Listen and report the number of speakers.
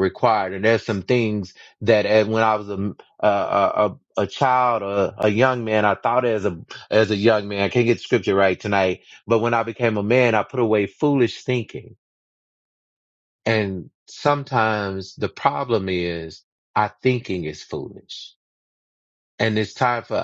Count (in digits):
1